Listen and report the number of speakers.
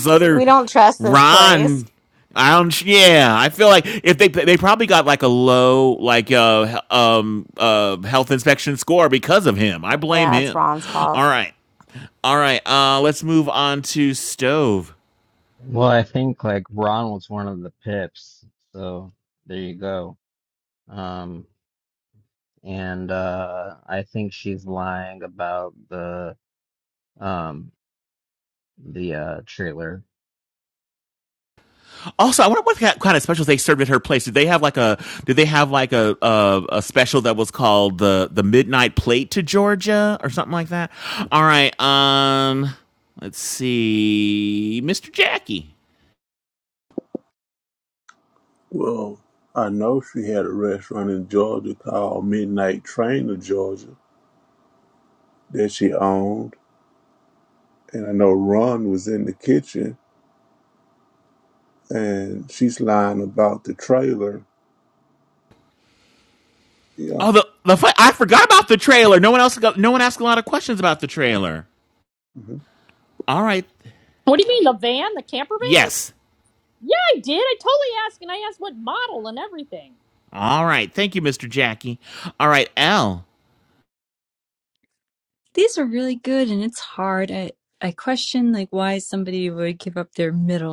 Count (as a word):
six